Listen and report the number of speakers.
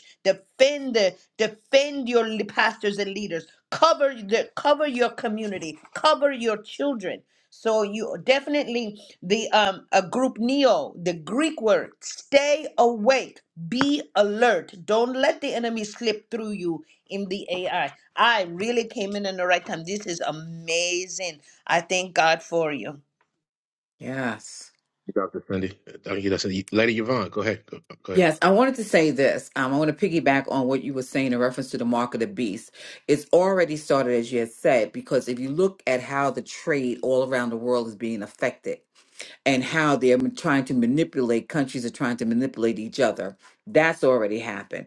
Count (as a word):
three